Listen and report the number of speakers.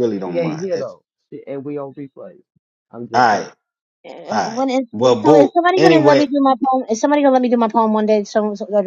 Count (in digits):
3